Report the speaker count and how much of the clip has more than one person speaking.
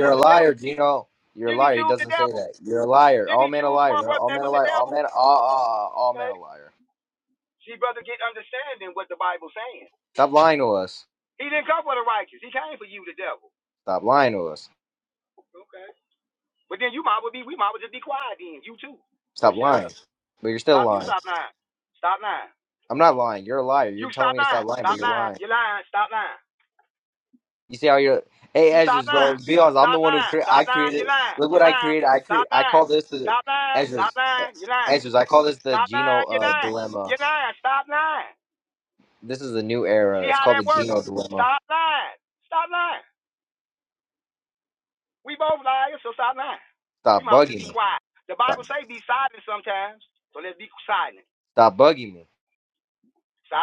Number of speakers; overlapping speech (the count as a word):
two, about 22%